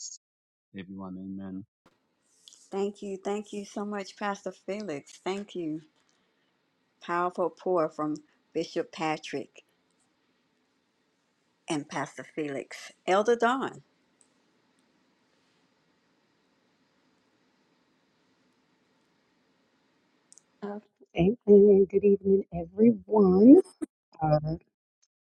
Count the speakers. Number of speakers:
3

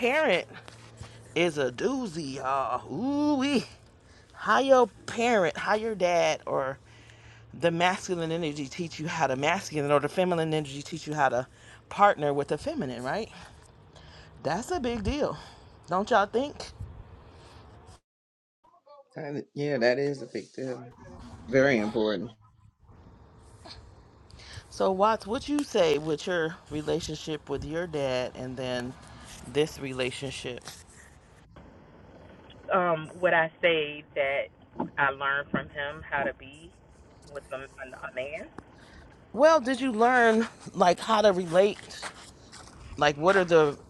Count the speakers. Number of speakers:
3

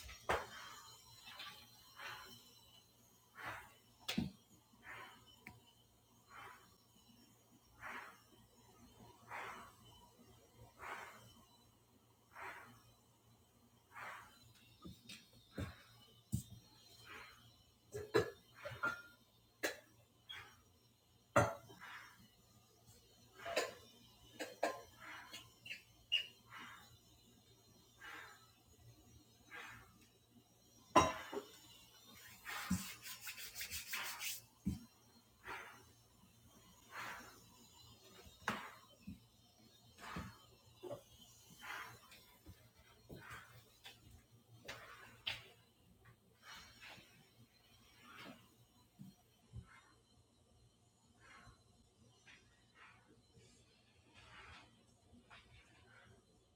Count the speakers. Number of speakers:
0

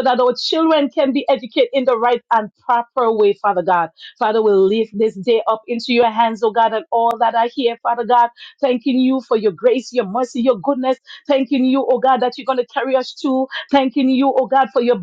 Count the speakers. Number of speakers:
1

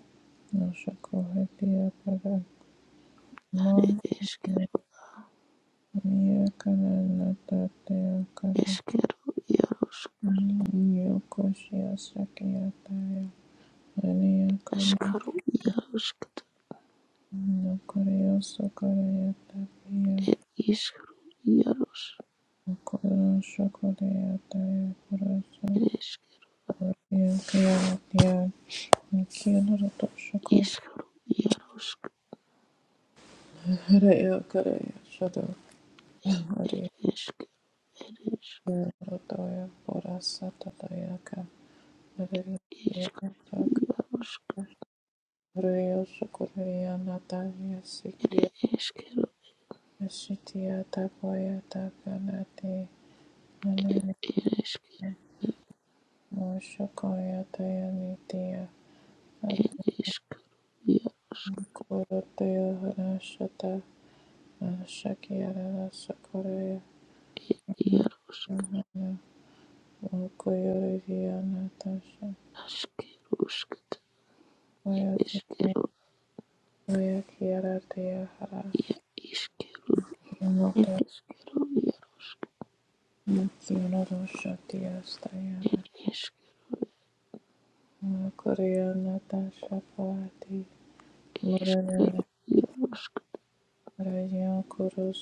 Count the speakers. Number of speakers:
2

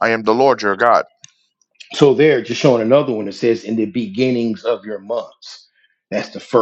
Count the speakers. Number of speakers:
2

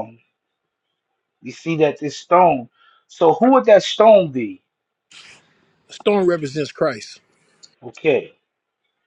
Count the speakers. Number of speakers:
2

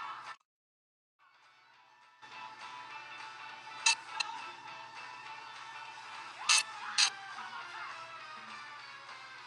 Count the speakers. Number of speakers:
0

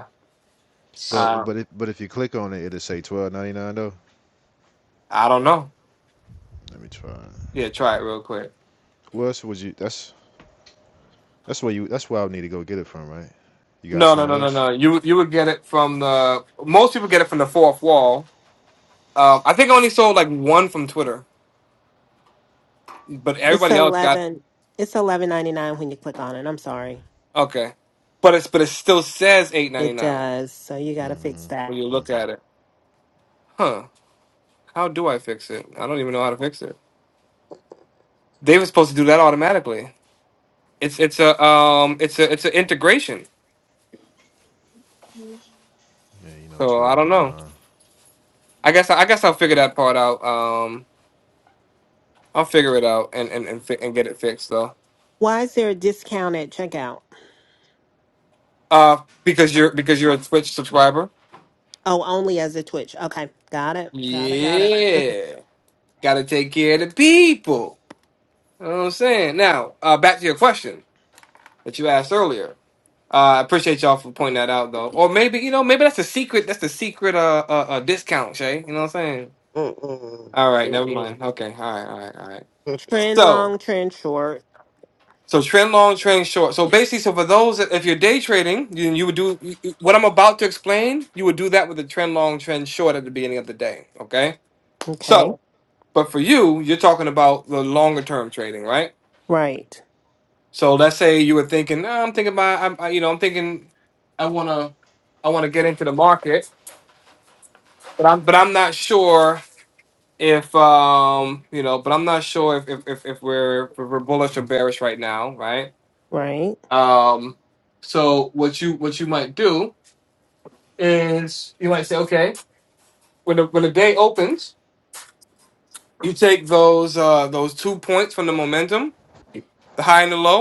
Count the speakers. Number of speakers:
4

